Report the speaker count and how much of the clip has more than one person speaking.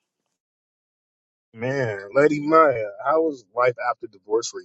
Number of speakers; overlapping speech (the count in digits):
1, no overlap